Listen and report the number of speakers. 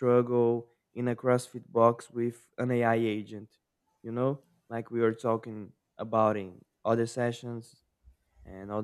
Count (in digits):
1